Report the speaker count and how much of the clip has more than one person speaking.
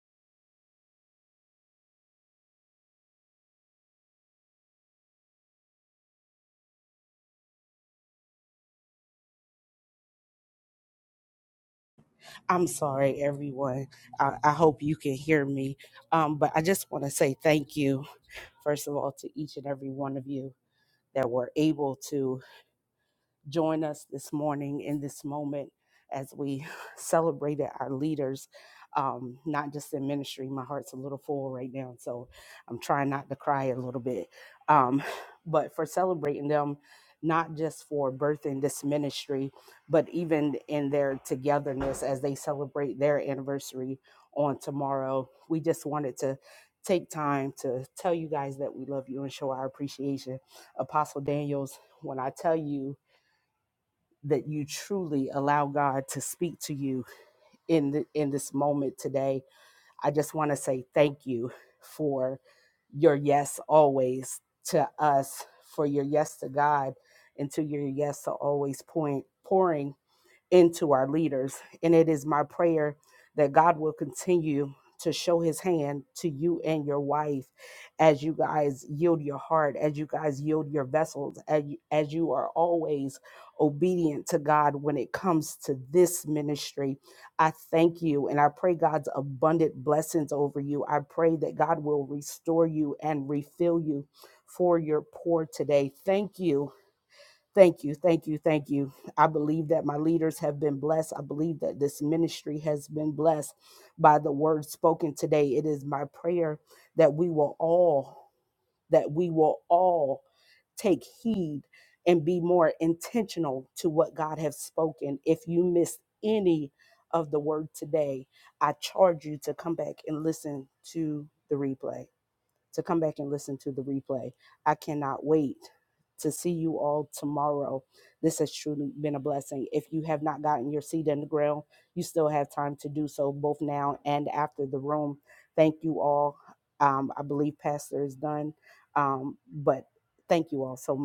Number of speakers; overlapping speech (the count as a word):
one, no overlap